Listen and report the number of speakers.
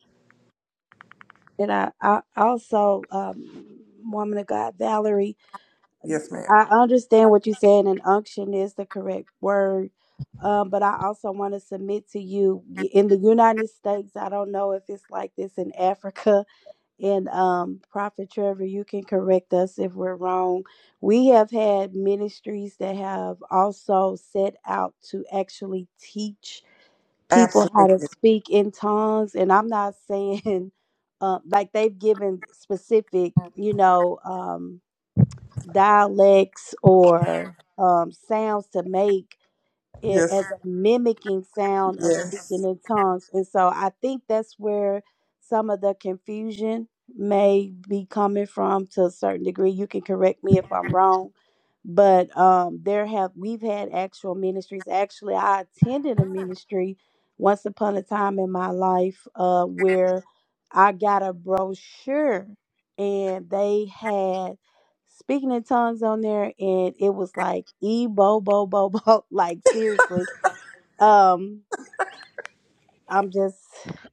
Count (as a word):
two